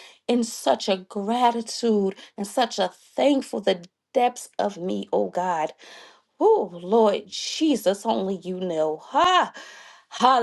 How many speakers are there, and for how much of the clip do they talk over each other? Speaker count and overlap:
one, no overlap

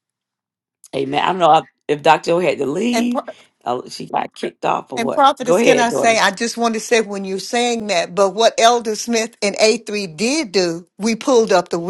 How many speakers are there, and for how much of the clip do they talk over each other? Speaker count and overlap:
two, about 12%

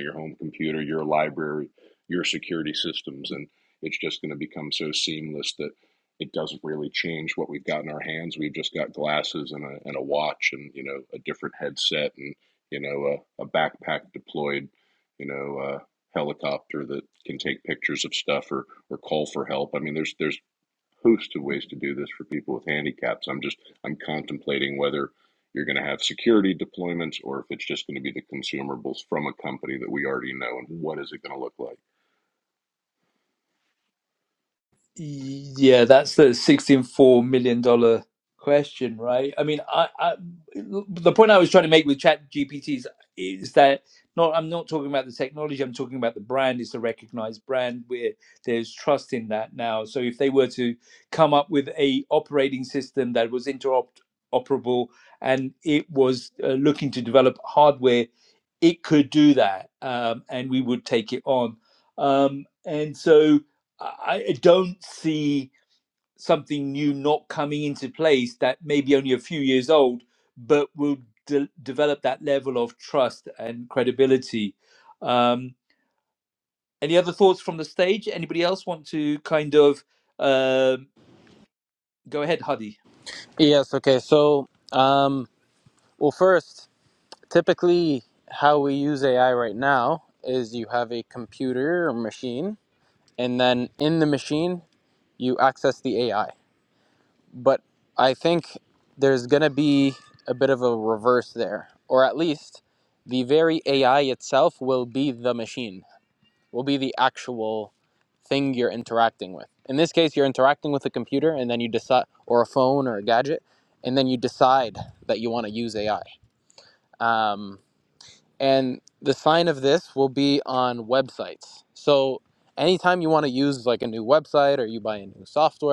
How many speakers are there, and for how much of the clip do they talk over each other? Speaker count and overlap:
three, no overlap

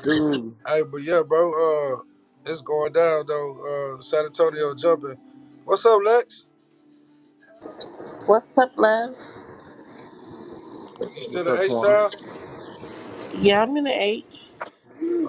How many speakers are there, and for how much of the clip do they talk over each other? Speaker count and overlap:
three, about 4%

